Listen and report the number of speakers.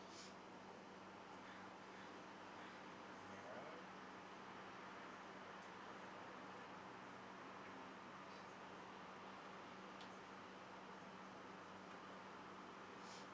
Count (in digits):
1